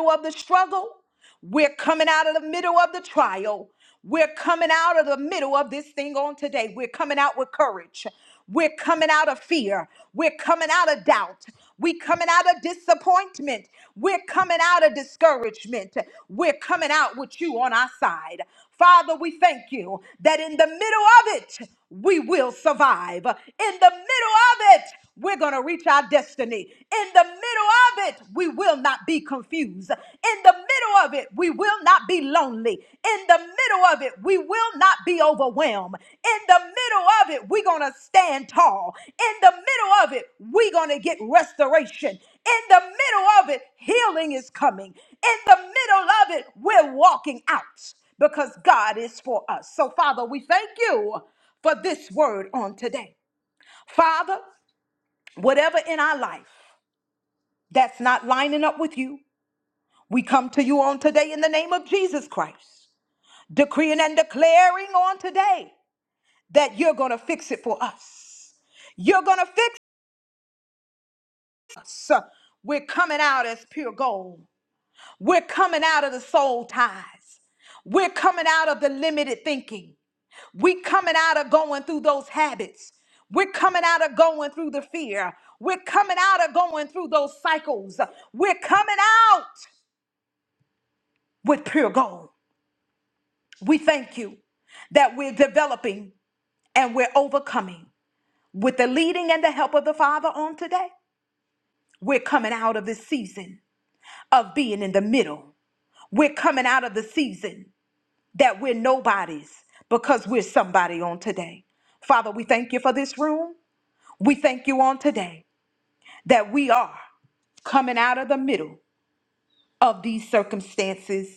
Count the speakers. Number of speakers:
one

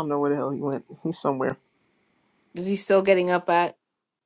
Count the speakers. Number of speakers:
two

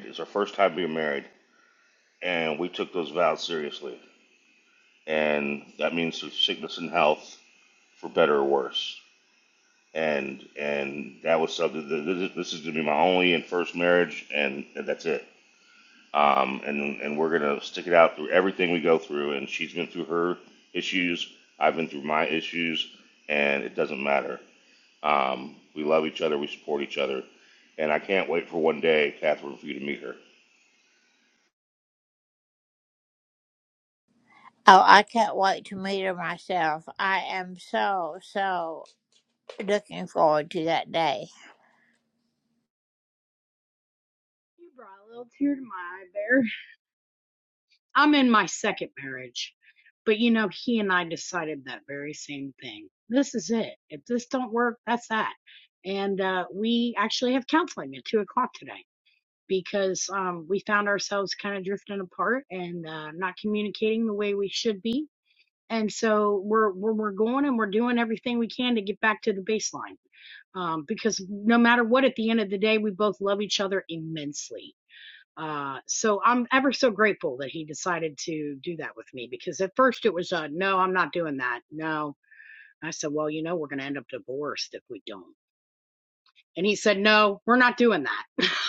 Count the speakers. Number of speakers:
three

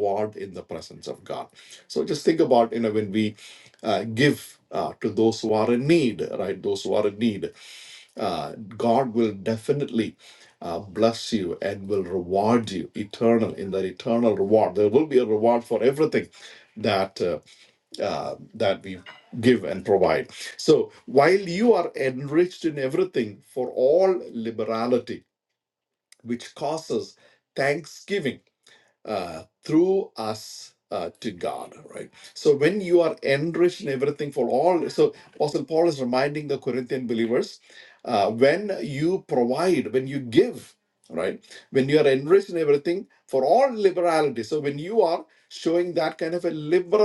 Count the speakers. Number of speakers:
one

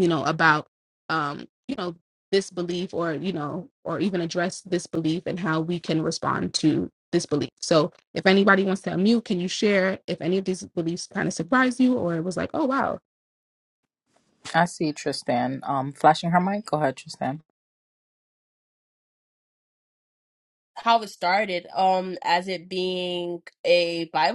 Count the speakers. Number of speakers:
three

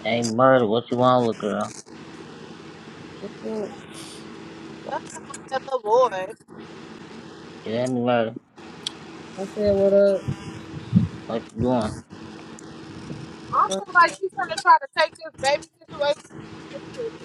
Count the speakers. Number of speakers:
three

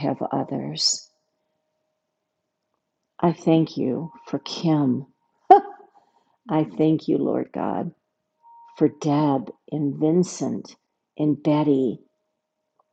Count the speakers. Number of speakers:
one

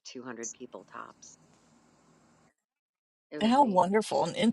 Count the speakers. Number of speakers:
two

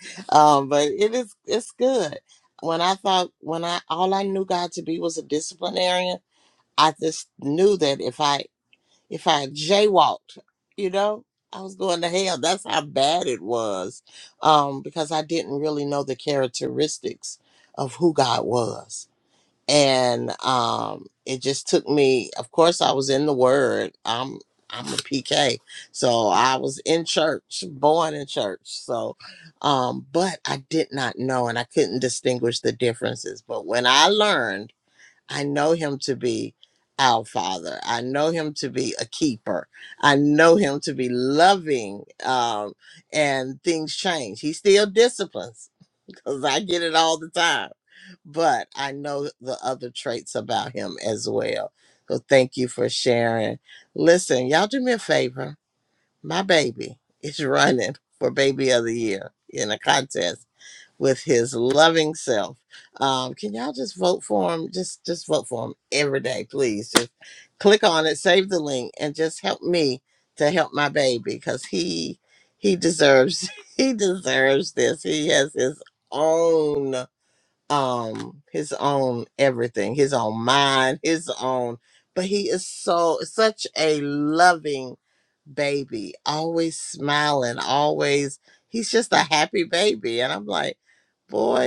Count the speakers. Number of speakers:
one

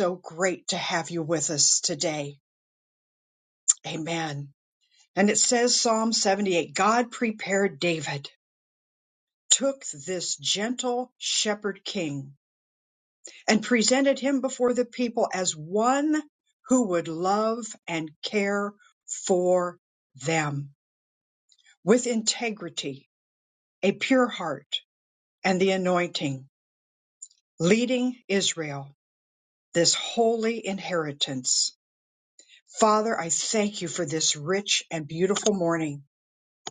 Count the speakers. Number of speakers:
one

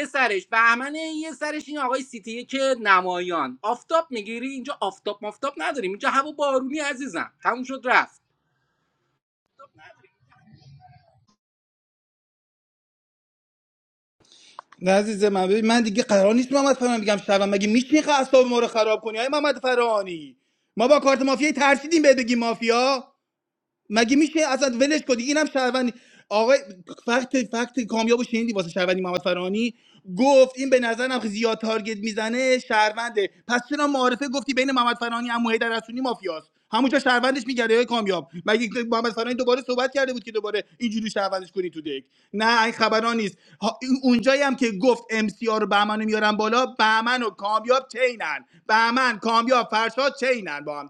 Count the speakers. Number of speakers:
two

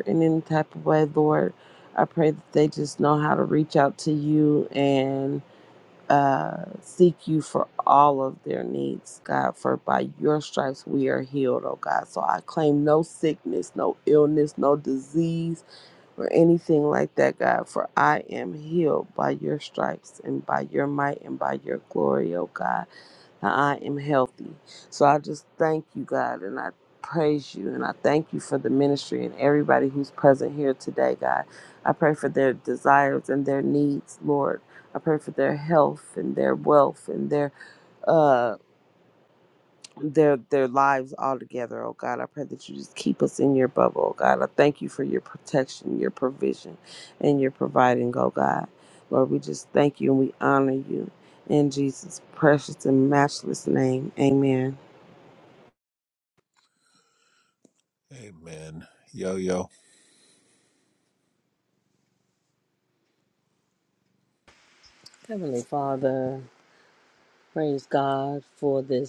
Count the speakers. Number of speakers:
three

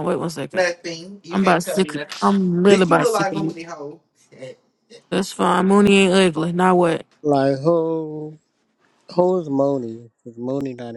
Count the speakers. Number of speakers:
three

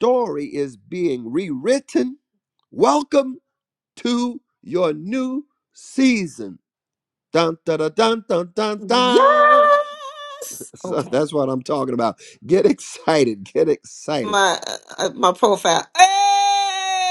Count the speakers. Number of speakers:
two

